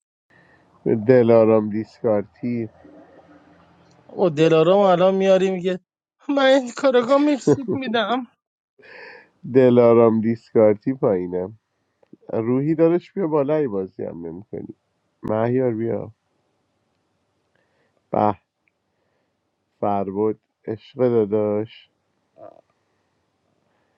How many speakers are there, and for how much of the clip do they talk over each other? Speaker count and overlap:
2, no overlap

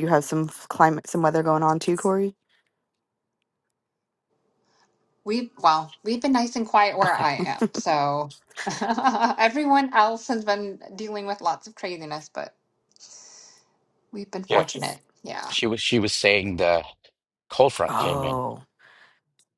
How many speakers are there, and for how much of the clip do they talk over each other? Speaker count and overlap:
3, about 5%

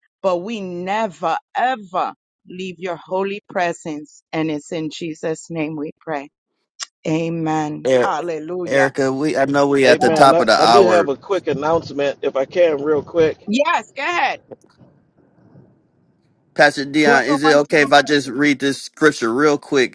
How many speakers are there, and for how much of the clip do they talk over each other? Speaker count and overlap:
3, about 14%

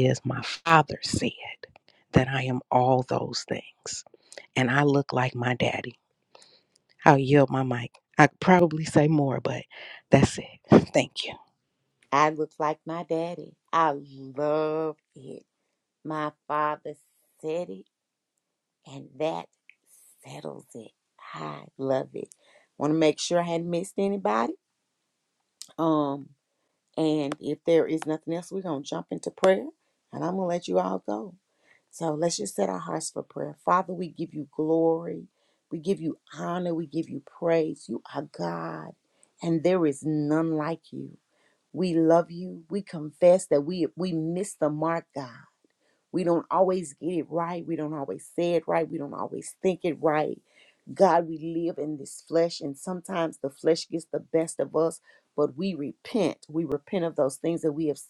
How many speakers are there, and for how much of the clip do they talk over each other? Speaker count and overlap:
2, no overlap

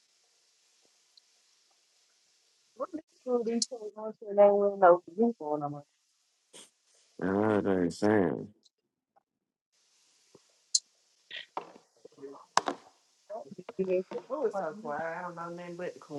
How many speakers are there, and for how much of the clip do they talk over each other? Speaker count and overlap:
3, about 2%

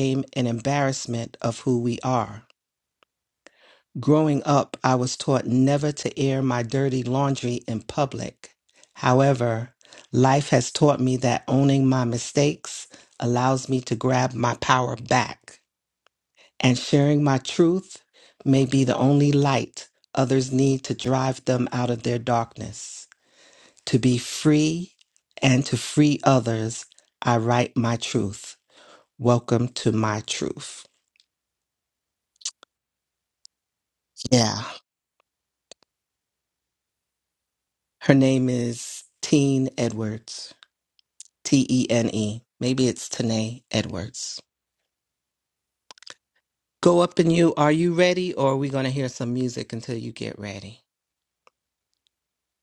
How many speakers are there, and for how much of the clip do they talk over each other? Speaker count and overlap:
1, no overlap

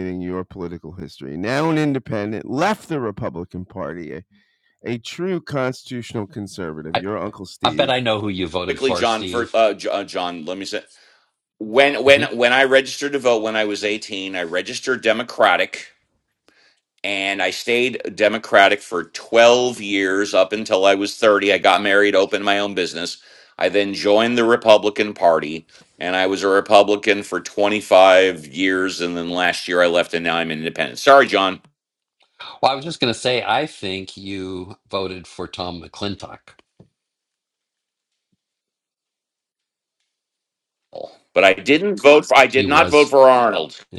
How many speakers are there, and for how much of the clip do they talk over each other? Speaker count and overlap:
3, about 4%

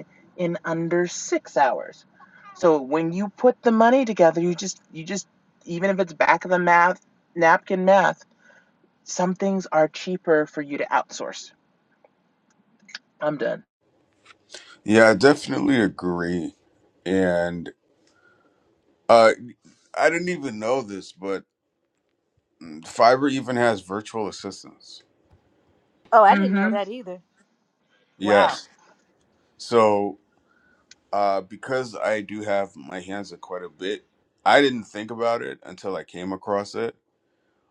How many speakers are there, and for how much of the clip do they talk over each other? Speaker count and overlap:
3, about 2%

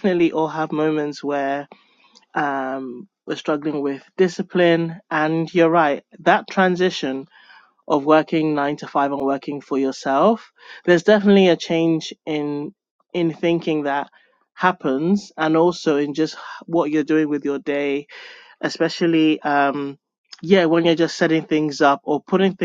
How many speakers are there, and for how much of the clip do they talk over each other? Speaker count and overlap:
1, no overlap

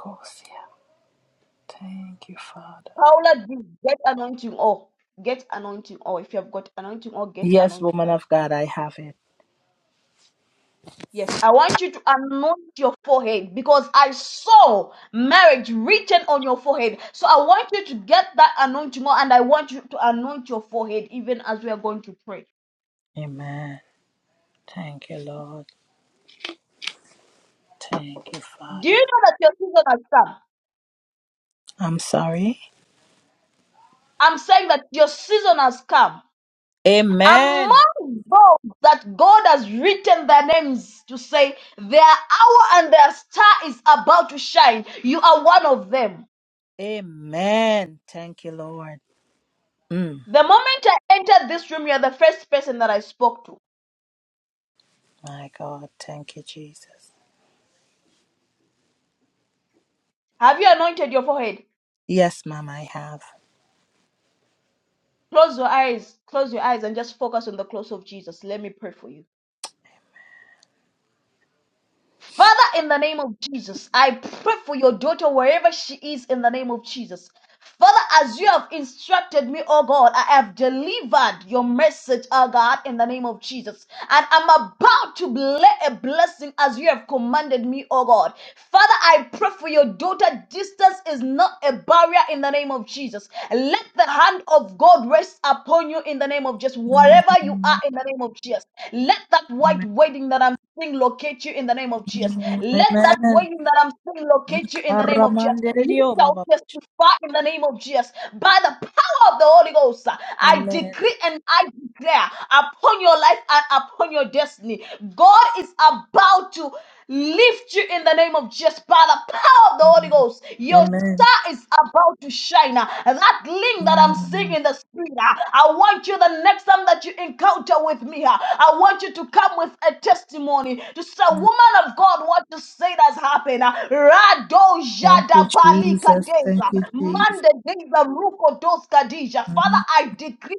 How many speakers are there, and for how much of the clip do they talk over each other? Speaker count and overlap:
2, about 7%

